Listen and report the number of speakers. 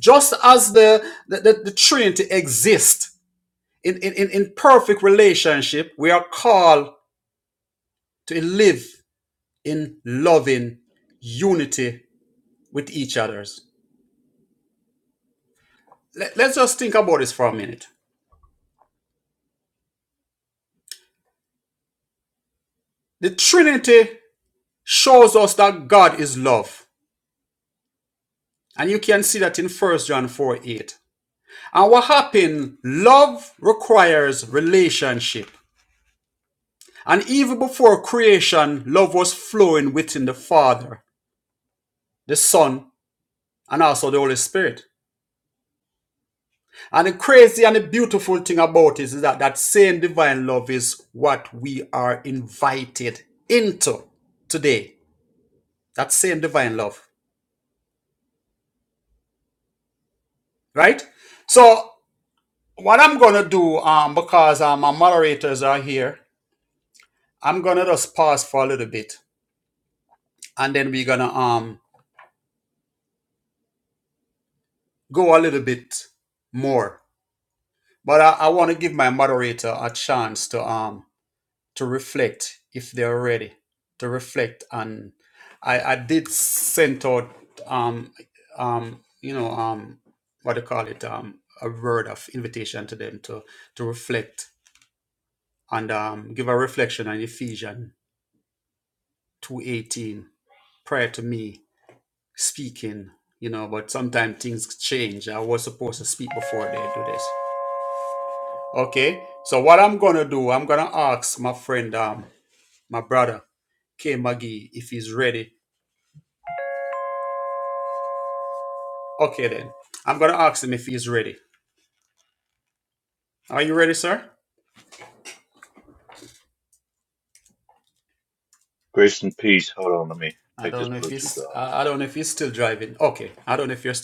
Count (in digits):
2